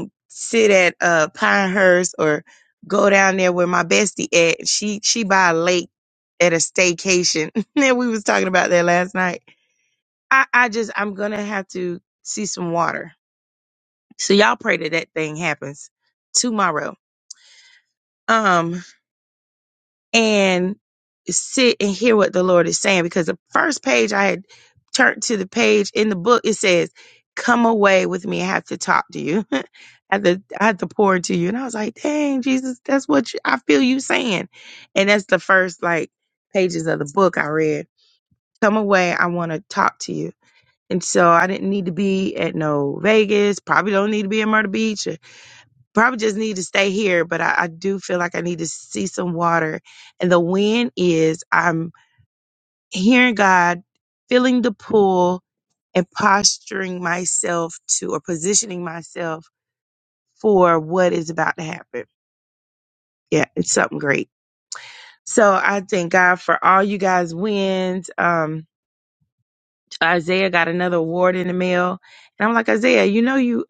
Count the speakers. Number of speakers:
one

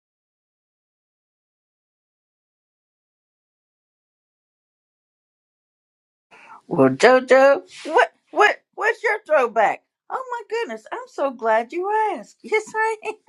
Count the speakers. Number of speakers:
one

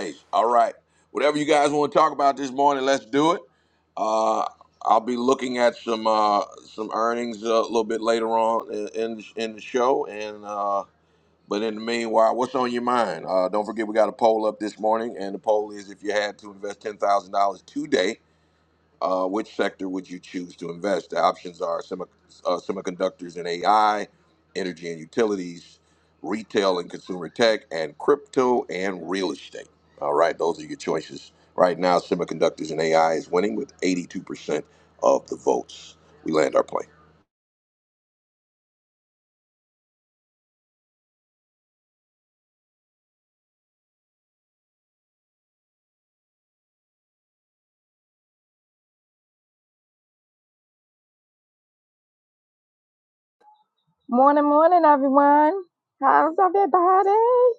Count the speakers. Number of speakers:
two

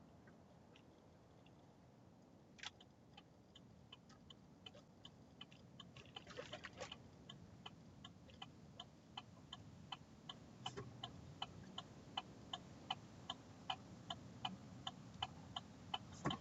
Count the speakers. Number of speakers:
zero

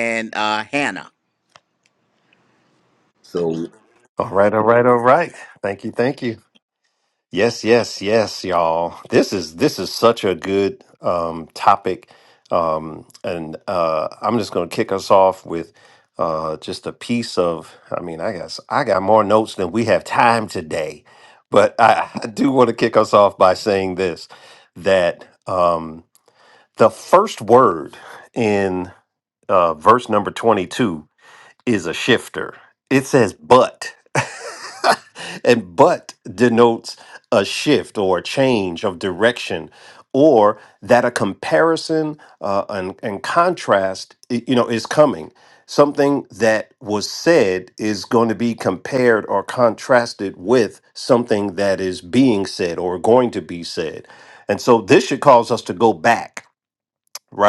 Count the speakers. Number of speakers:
two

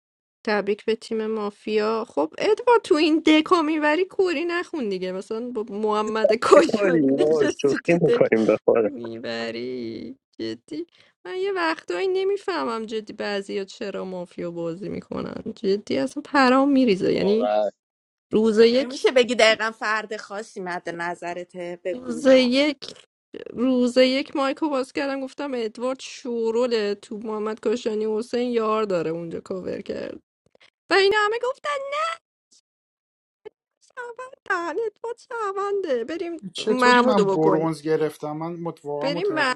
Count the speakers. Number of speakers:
four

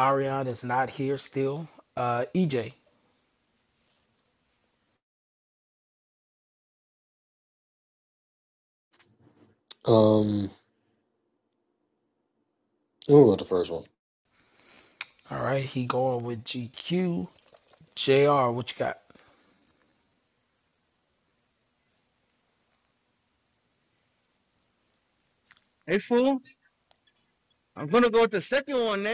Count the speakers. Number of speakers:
three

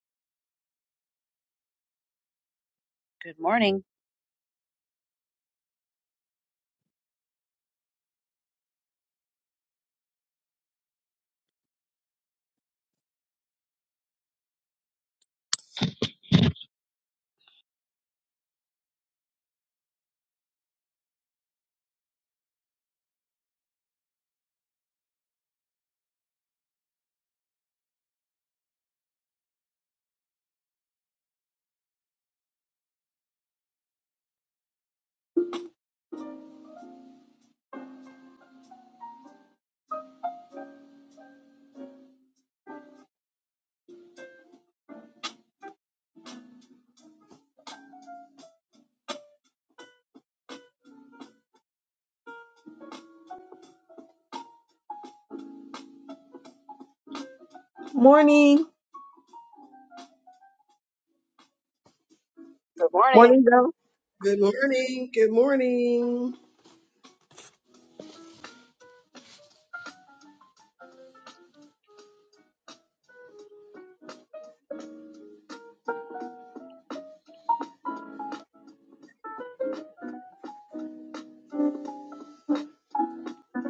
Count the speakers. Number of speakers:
three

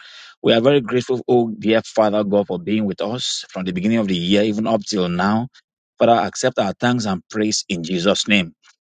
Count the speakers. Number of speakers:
one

